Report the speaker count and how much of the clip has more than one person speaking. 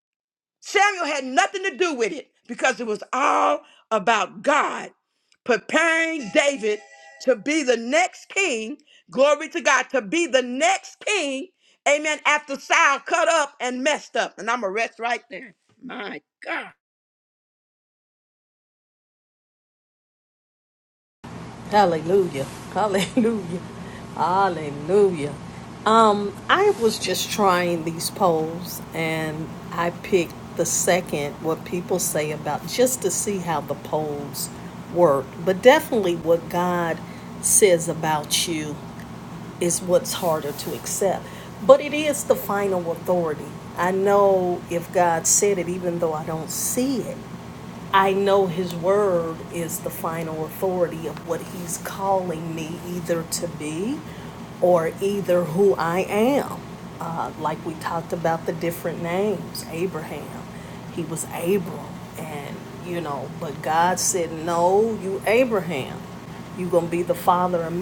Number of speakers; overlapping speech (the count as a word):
two, no overlap